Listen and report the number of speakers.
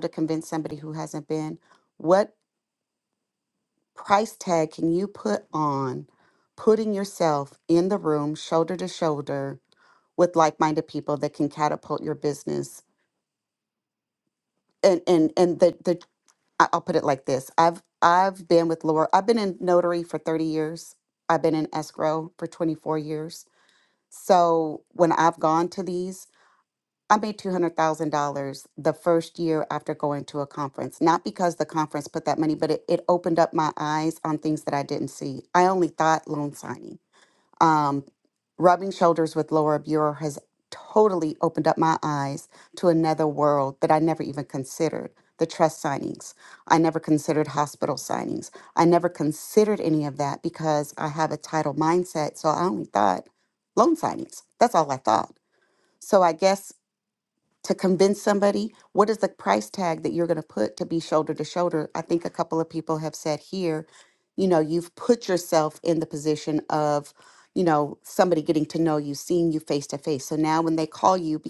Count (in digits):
1